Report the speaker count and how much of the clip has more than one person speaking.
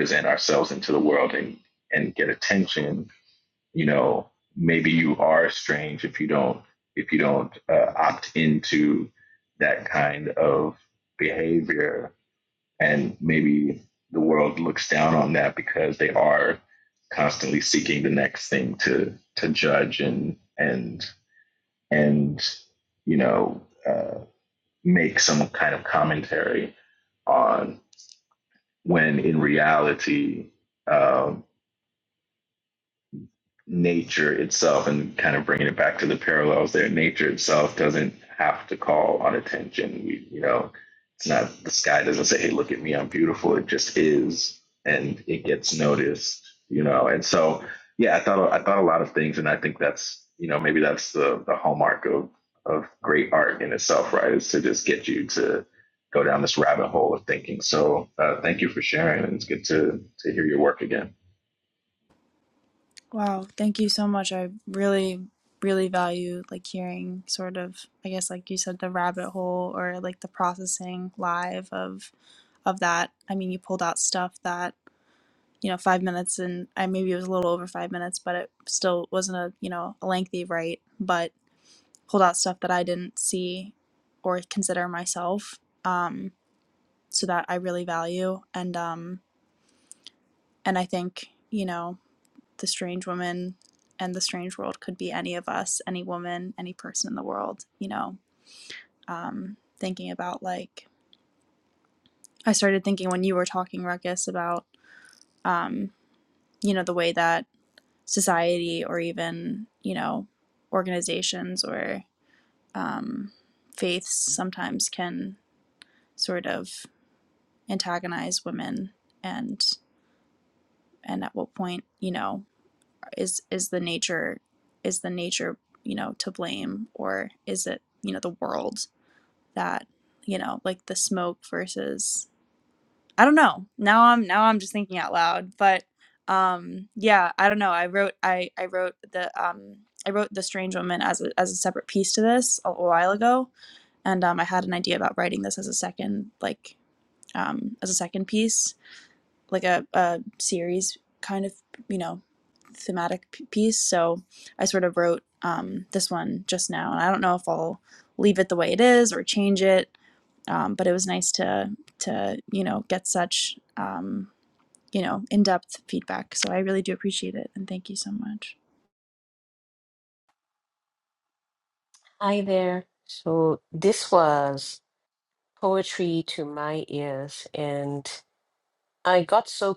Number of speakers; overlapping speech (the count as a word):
three, no overlap